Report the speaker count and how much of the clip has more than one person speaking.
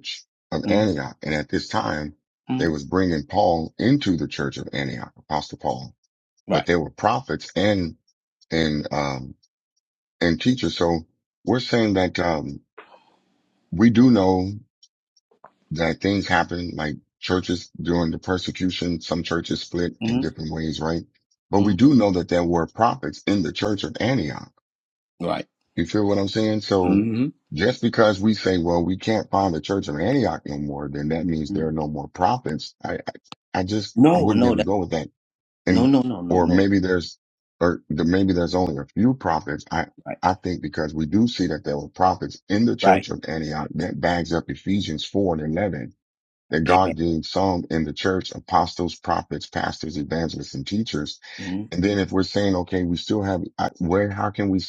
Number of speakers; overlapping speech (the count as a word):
two, about 6%